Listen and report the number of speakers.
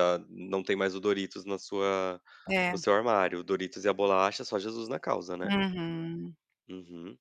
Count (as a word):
two